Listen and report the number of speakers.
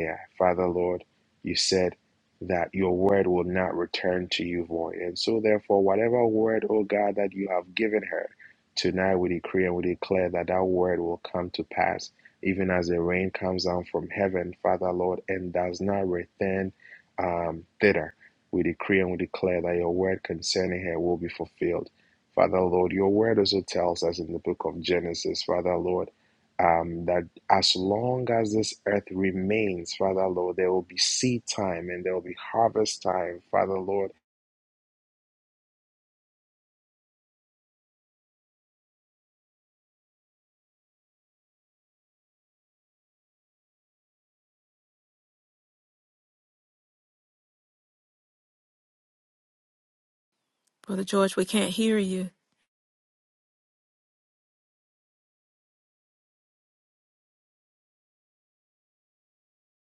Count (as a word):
two